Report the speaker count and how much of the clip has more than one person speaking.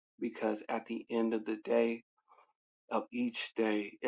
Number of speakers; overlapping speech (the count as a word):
one, no overlap